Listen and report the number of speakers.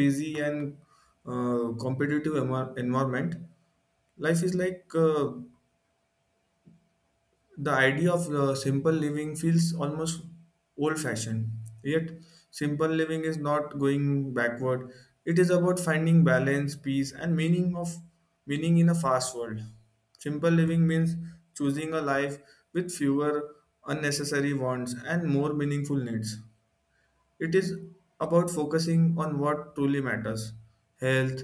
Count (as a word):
one